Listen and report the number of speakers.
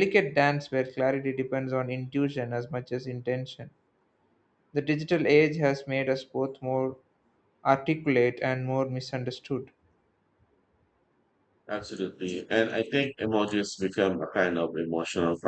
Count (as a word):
two